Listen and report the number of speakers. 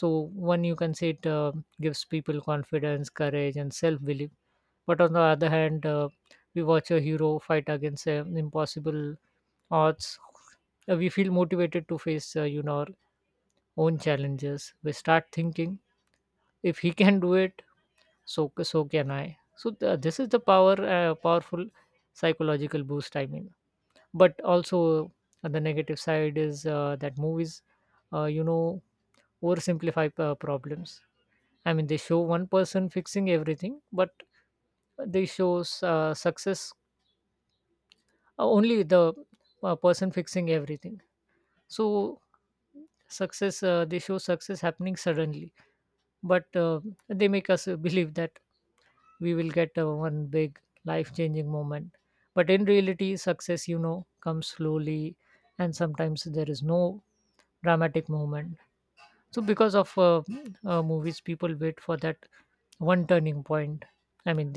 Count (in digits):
1